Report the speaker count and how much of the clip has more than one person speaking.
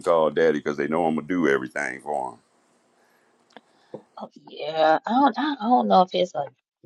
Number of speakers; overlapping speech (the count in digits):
2, no overlap